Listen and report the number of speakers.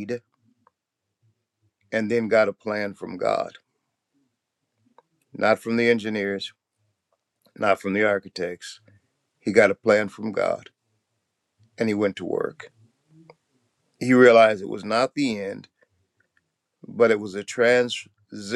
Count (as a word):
one